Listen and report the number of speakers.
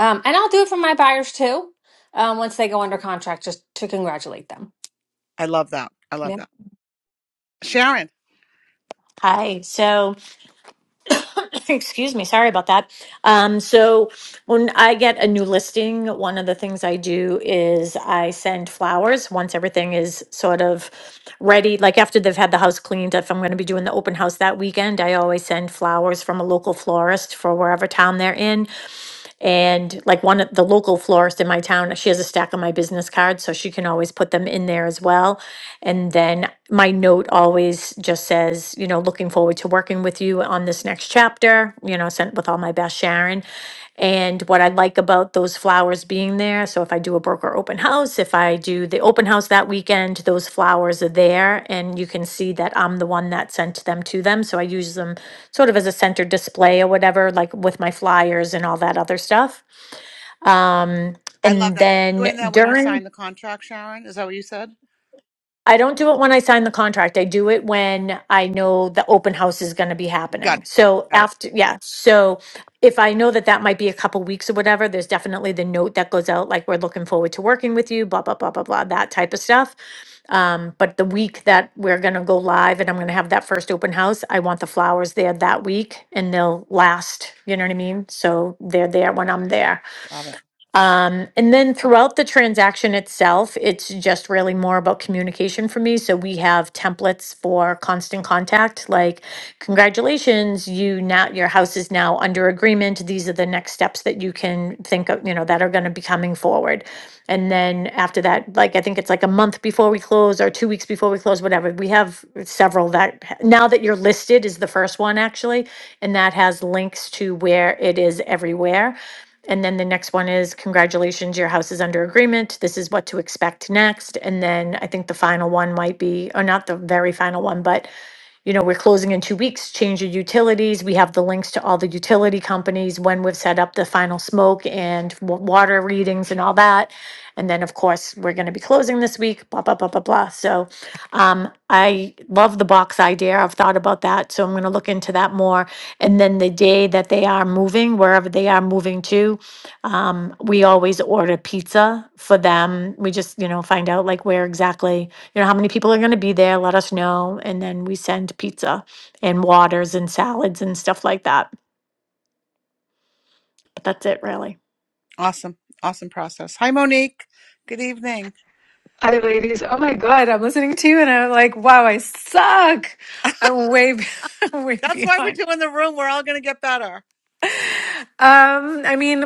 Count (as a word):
four